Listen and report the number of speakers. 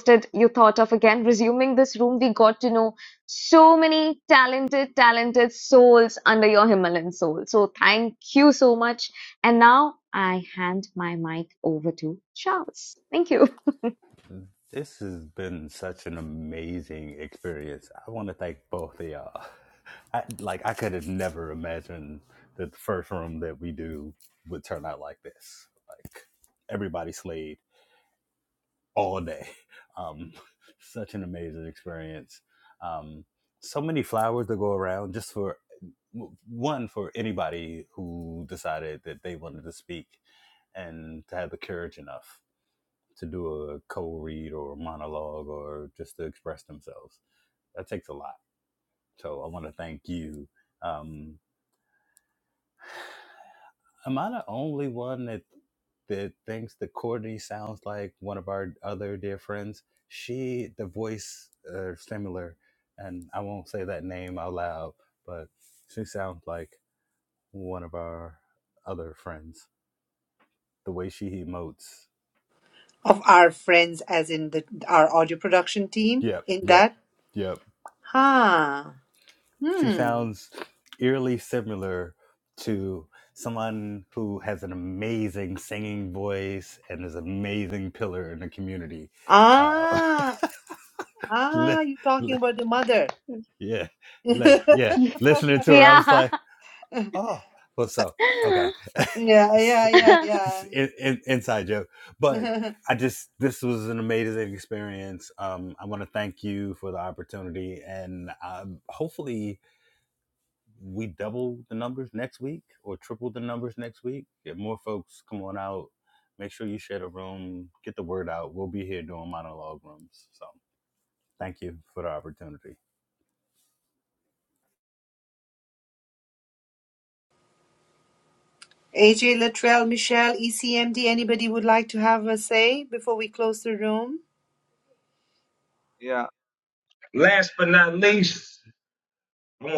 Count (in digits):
4